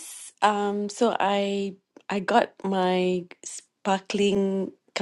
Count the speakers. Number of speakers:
one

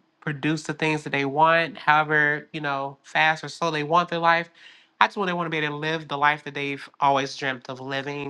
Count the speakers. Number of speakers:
one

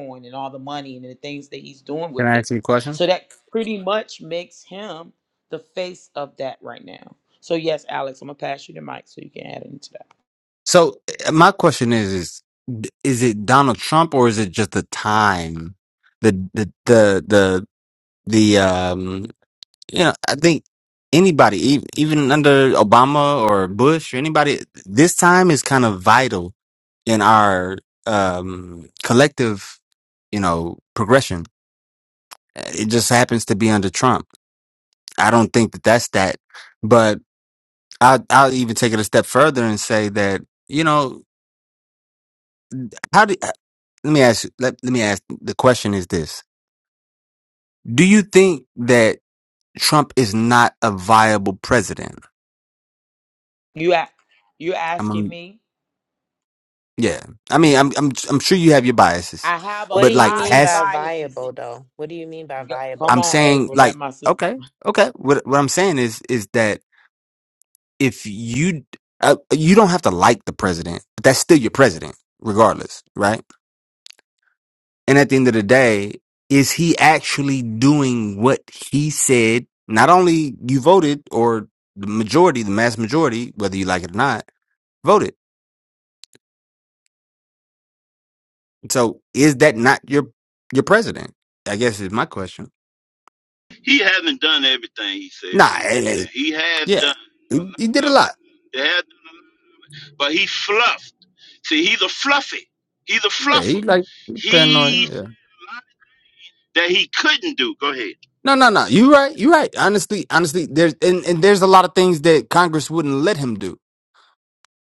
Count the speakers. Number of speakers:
four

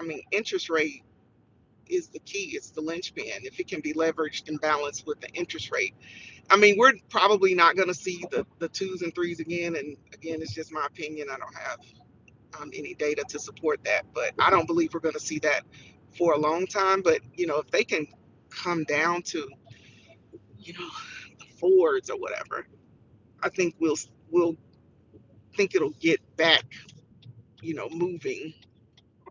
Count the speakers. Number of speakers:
one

